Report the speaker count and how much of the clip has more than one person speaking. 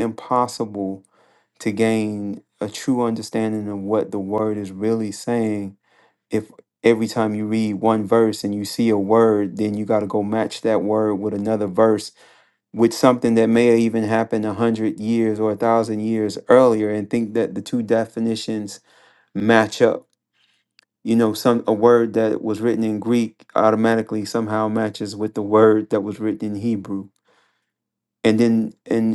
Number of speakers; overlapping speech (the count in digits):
1, no overlap